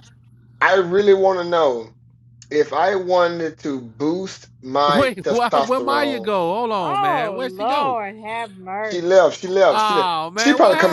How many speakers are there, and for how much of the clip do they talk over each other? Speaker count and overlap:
3, about 36%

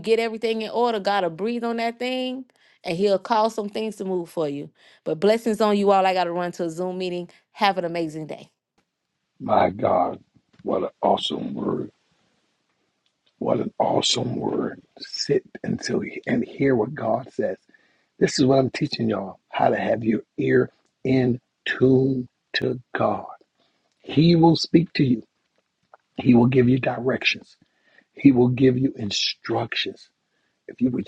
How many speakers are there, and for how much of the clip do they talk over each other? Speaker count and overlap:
2, no overlap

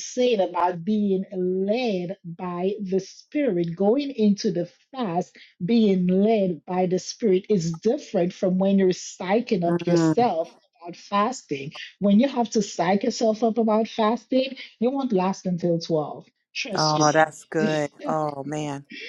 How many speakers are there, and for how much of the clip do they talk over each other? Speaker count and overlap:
2, about 7%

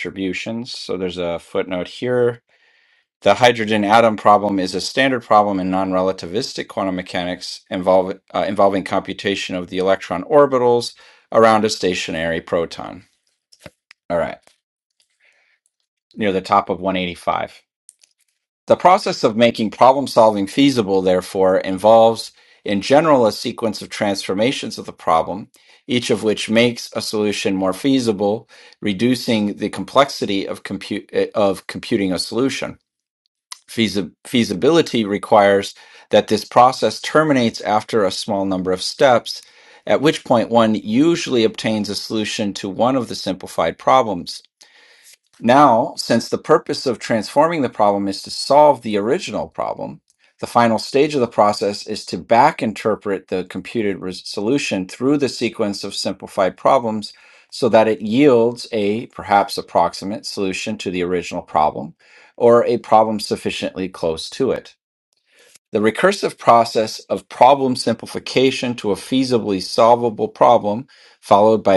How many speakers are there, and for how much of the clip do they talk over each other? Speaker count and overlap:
1, no overlap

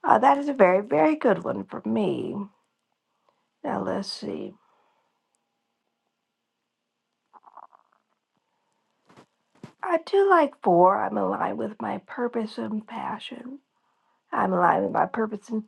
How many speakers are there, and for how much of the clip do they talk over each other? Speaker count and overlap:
1, no overlap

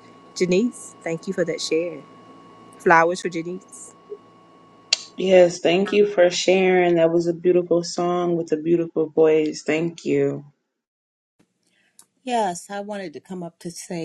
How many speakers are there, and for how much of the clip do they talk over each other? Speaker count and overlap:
3, no overlap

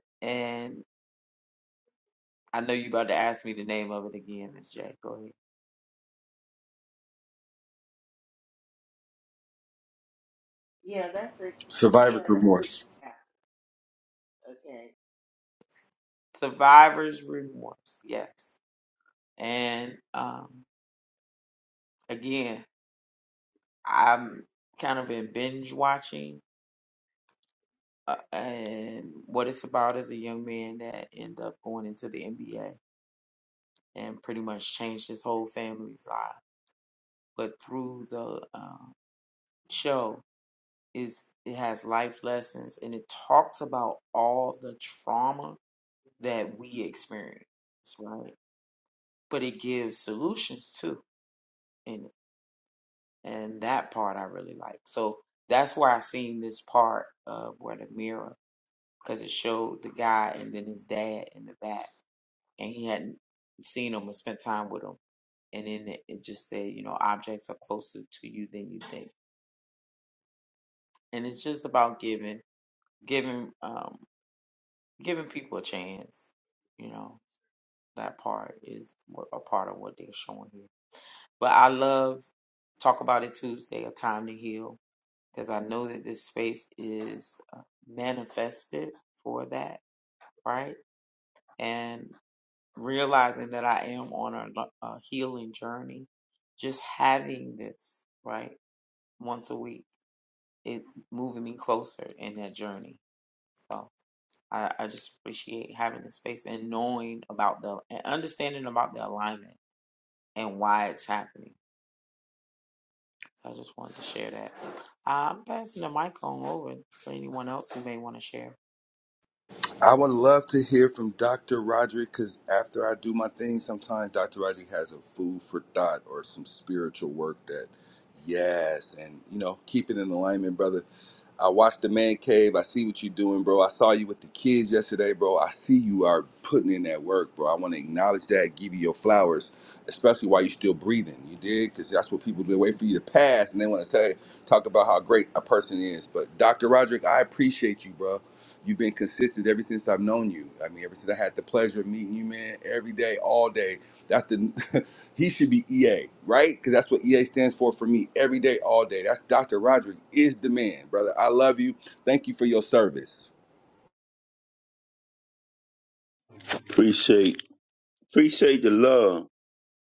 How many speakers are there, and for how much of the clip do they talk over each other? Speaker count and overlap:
4, no overlap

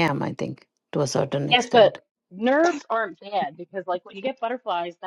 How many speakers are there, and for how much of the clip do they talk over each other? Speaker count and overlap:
2, about 9%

